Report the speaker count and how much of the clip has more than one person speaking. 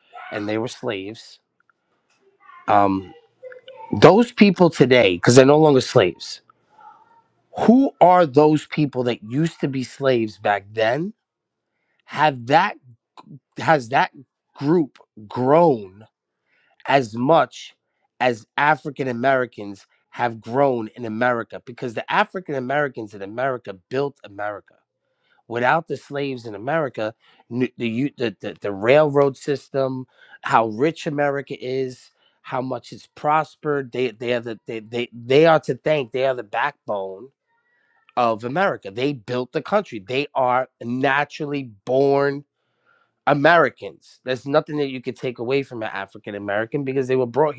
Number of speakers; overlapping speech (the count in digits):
1, no overlap